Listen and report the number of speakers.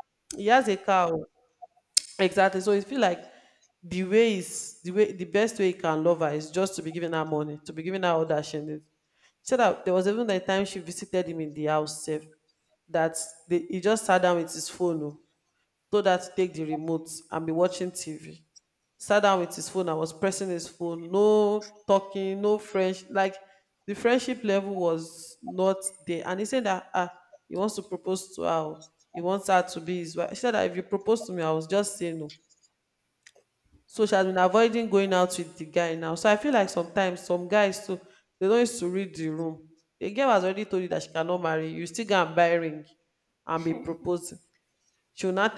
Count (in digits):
1